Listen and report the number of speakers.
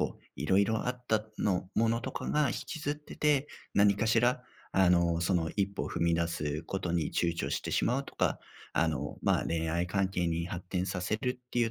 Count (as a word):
one